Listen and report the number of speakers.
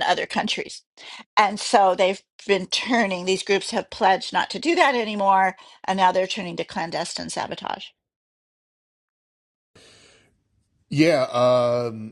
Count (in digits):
2